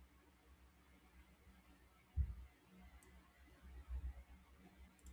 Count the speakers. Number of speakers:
0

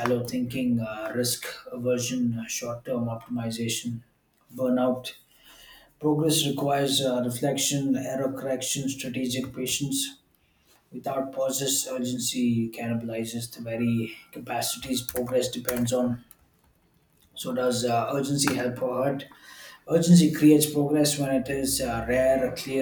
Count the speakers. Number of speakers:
1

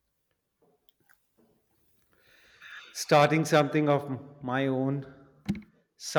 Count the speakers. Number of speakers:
1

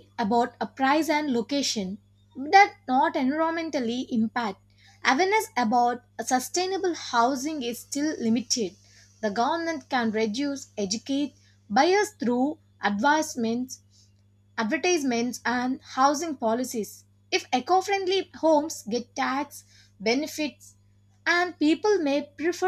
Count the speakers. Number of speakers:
1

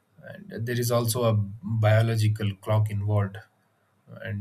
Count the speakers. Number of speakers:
1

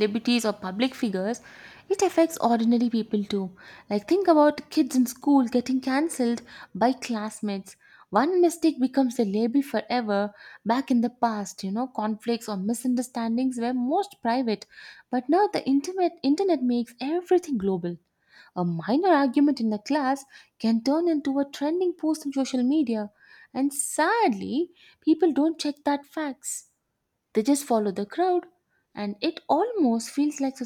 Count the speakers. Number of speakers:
1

